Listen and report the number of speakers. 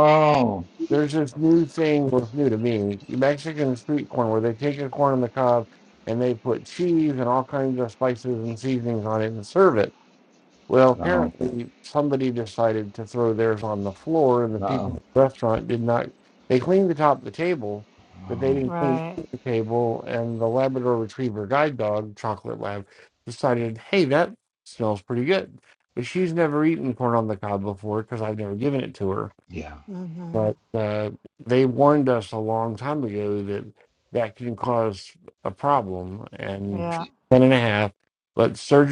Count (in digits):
3